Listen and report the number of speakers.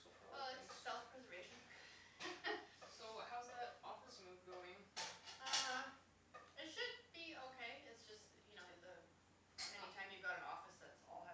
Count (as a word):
two